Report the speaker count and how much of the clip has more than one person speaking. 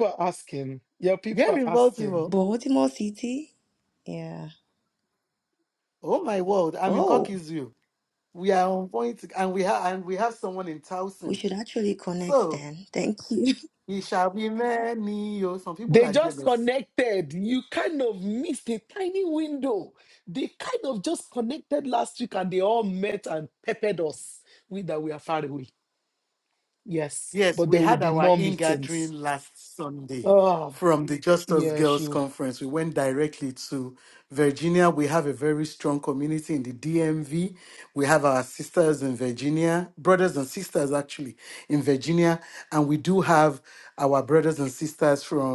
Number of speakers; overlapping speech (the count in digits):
3, about 10%